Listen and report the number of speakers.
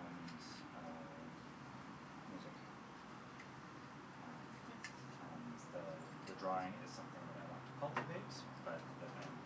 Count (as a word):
one